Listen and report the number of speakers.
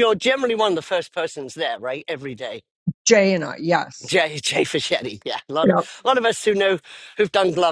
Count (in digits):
2